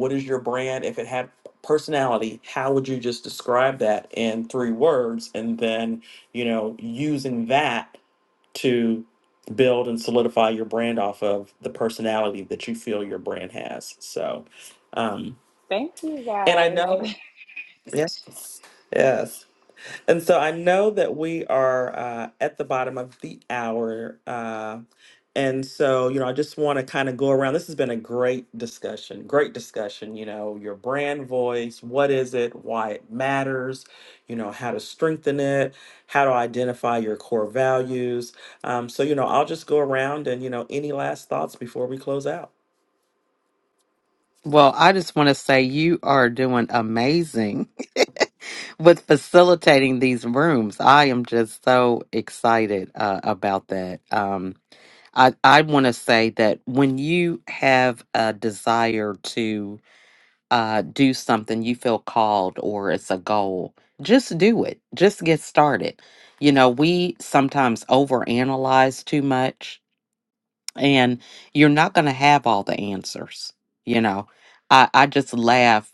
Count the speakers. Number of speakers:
3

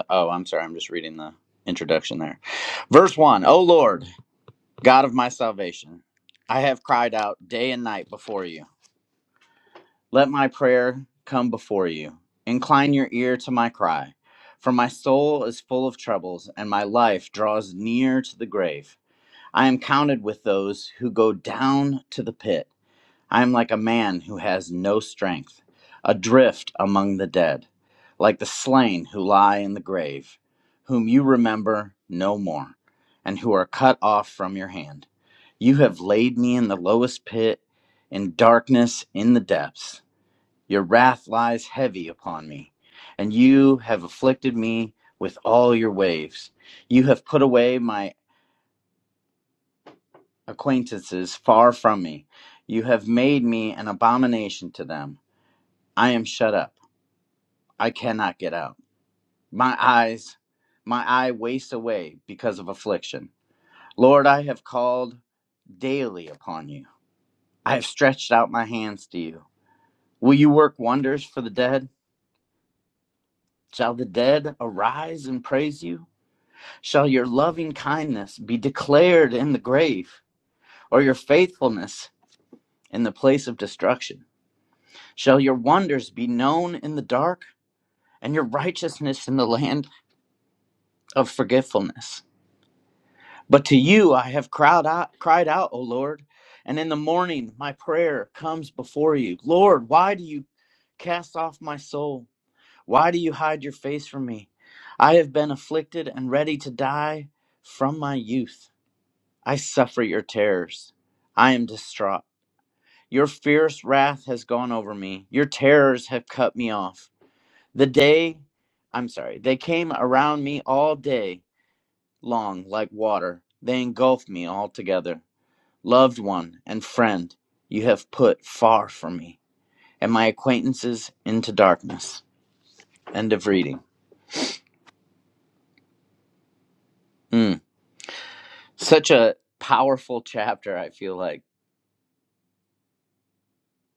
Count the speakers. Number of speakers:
1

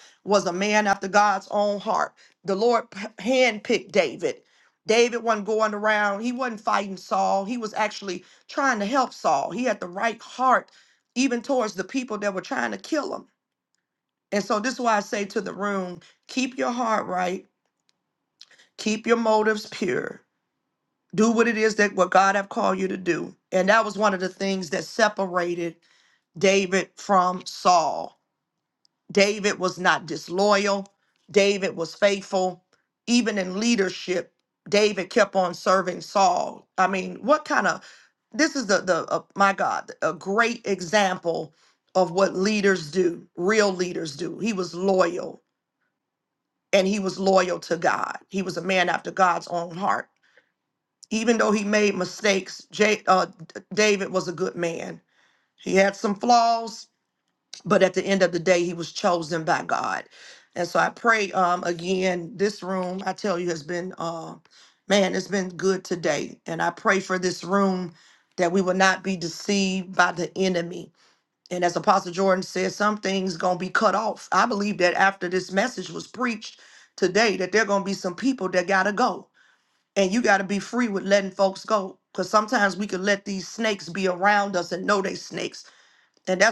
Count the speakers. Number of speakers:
1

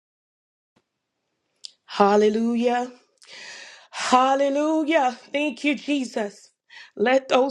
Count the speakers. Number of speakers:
1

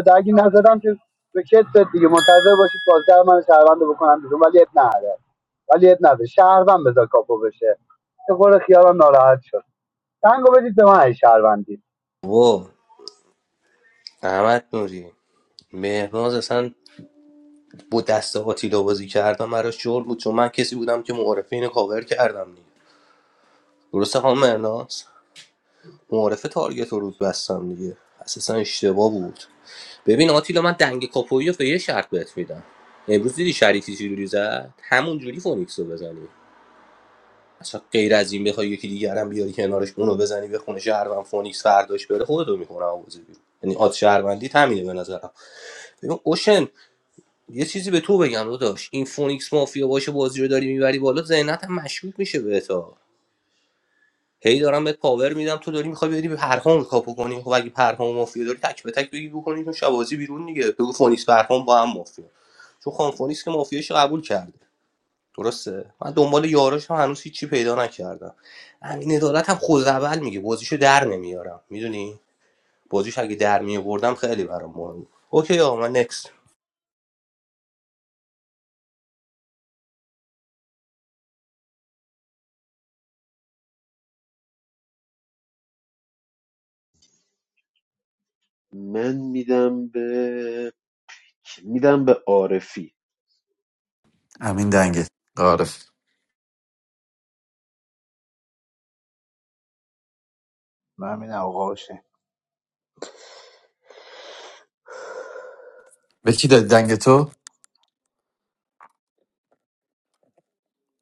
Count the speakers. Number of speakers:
5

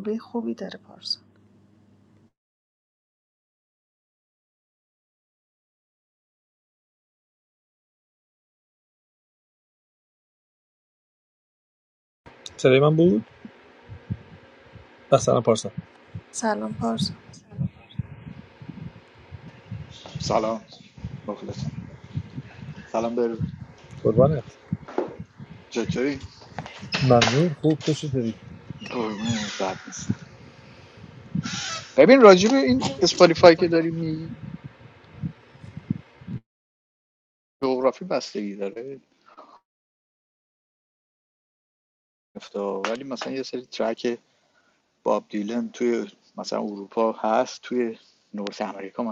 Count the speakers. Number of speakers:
3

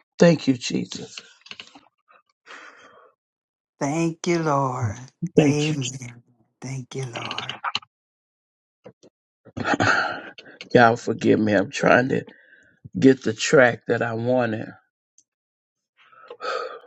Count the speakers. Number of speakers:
2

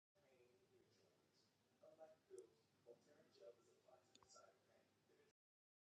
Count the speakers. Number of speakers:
0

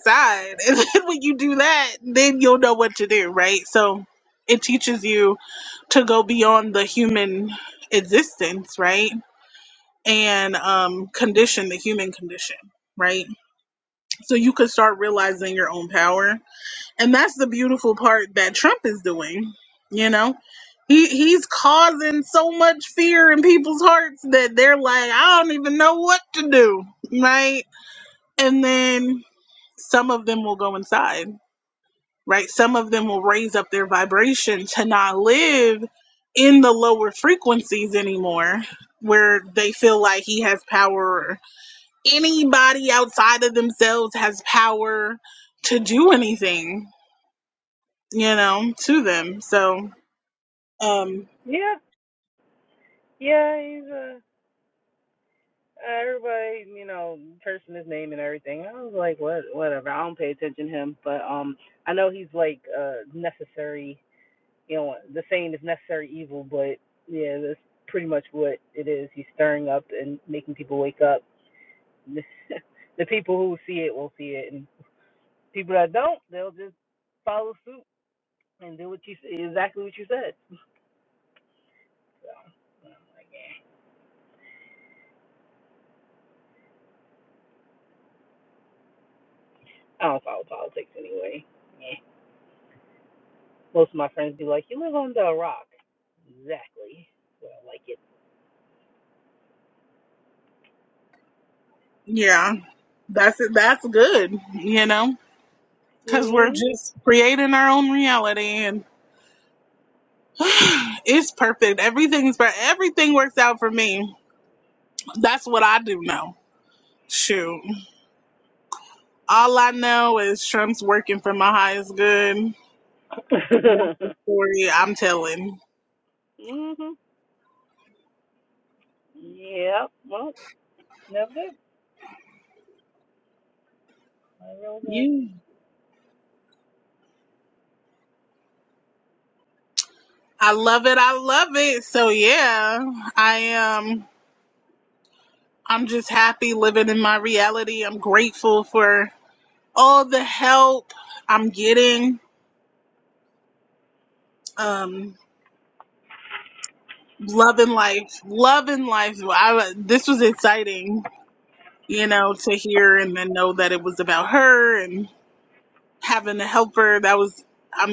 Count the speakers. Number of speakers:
2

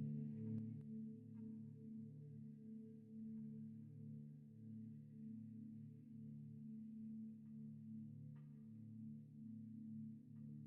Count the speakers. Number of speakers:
0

